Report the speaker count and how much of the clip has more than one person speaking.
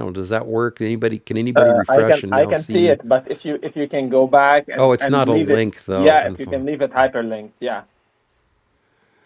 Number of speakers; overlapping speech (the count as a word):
two, about 31%